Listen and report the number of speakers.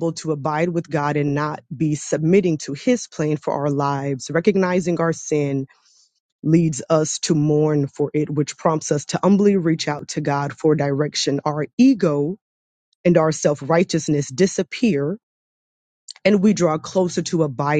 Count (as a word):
one